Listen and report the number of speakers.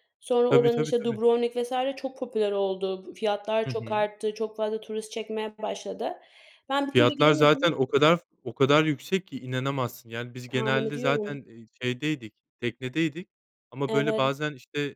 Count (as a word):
two